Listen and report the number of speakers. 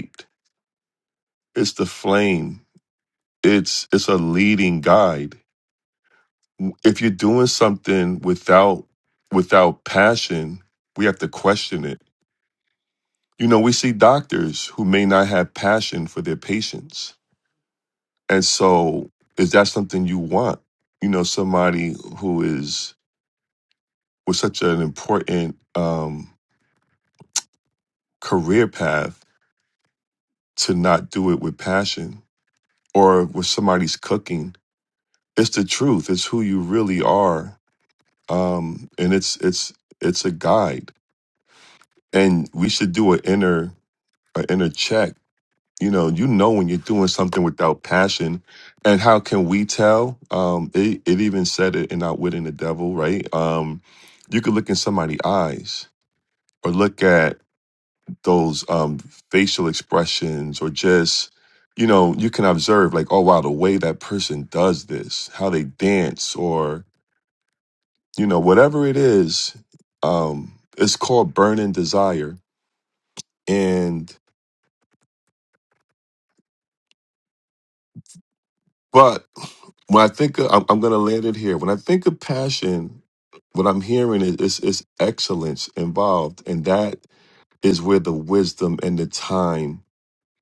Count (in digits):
1